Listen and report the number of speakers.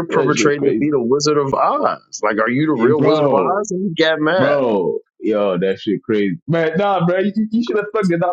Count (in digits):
2